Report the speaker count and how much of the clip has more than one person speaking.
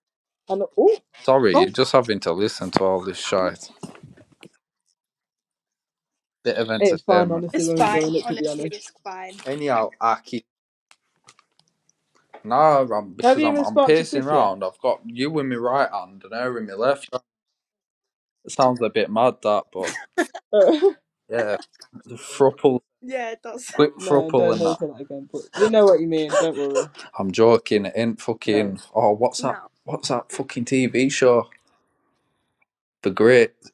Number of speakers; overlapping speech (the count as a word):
three, about 14%